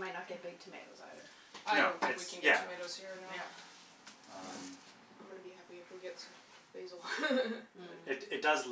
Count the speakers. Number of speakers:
three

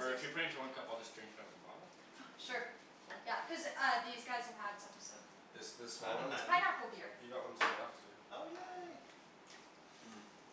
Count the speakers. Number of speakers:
four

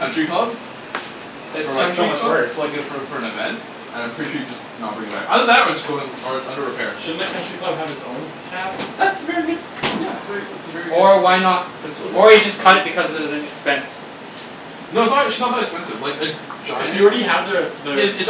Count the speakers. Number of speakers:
three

